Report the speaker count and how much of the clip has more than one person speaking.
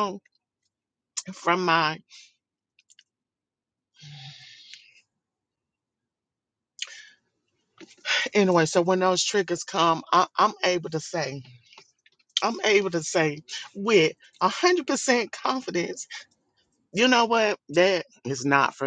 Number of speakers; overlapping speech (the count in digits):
1, no overlap